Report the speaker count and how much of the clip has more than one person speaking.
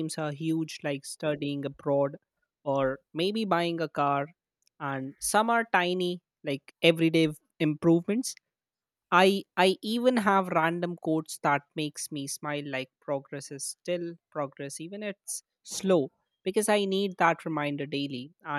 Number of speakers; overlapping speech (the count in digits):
1, no overlap